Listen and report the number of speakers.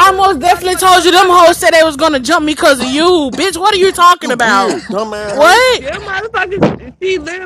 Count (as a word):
three